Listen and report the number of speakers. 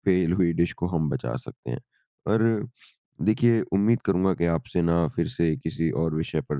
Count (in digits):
1